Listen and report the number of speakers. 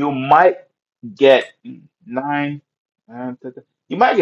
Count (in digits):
1